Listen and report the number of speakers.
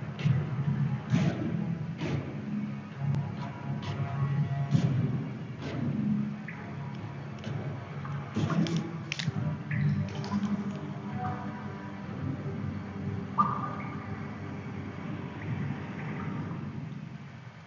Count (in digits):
0